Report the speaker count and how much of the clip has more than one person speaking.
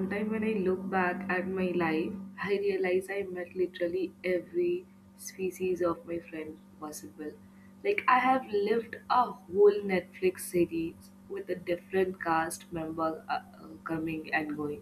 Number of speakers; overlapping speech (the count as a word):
one, no overlap